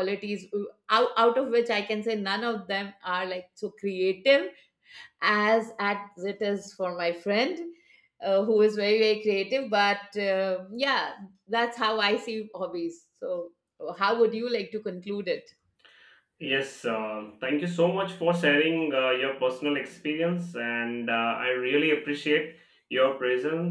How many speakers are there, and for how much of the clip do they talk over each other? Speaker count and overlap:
2, no overlap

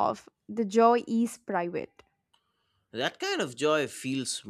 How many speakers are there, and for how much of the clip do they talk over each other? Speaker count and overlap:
2, no overlap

